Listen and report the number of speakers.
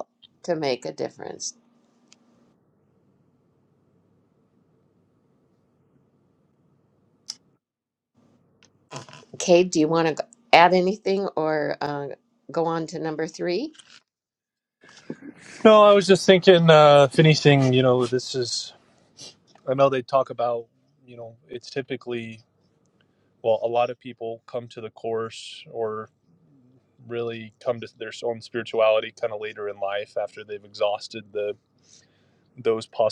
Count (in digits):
2